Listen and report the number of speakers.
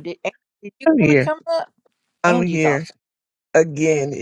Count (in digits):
2